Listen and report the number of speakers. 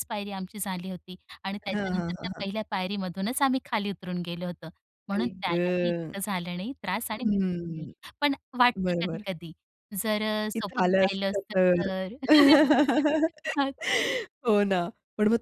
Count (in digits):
2